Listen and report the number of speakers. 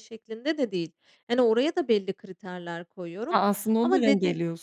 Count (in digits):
2